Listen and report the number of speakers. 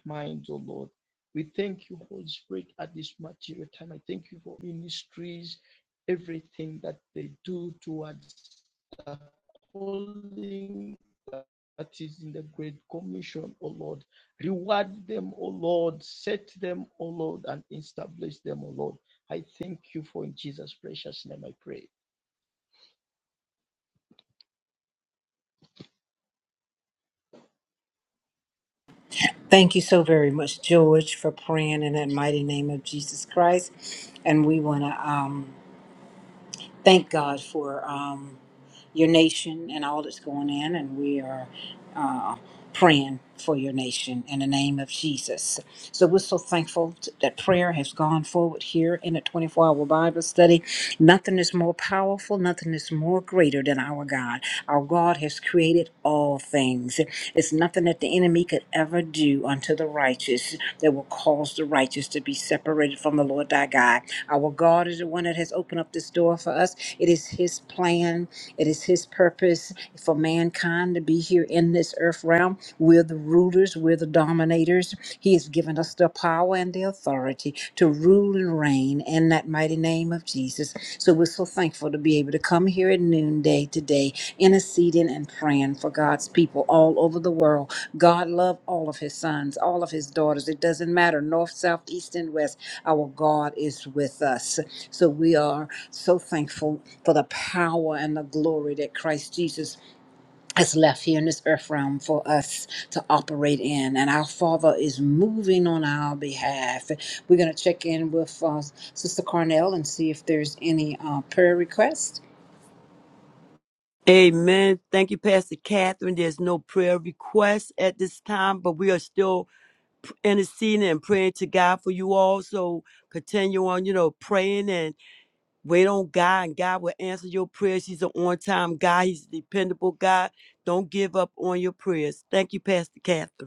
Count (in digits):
3